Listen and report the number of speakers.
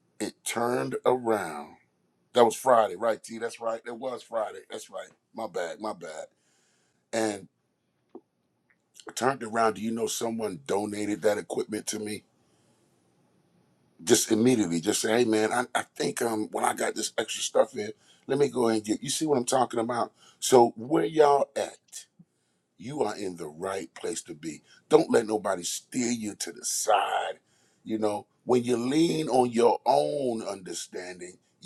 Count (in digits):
1